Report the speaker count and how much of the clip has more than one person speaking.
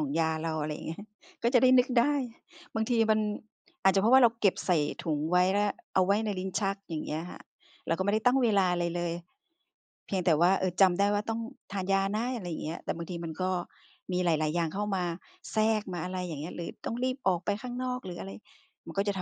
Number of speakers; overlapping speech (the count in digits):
1, no overlap